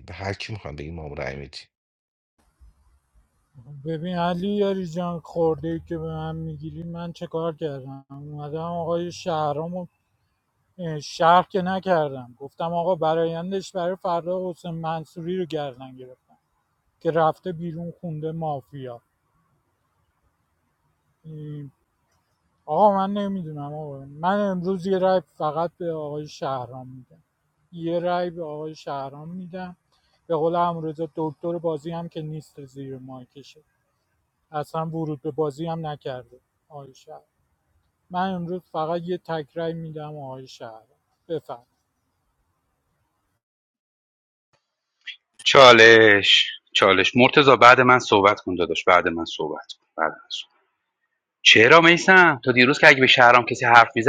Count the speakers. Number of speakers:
three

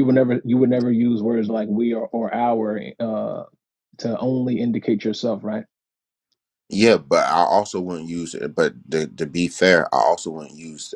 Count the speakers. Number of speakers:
two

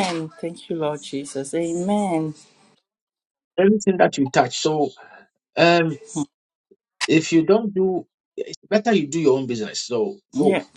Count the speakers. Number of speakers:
two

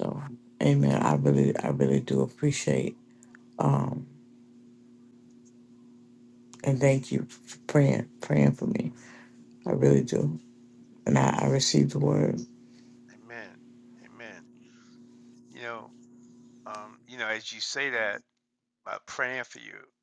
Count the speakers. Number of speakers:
two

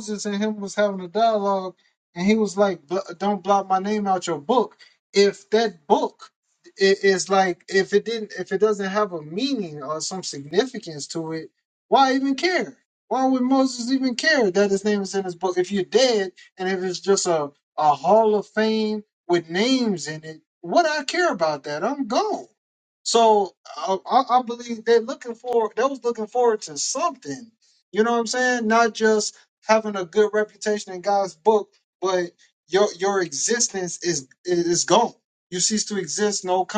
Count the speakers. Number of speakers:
one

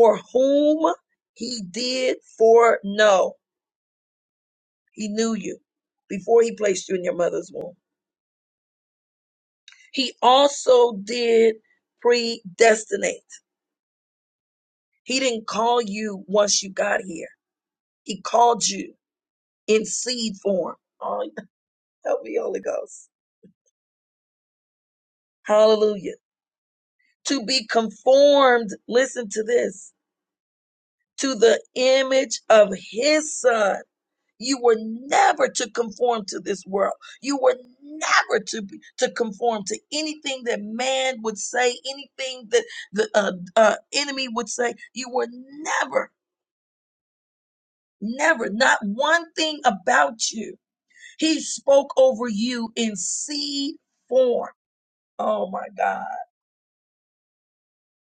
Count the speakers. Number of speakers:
one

